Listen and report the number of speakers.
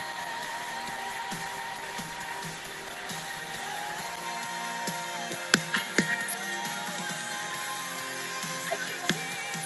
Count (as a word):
zero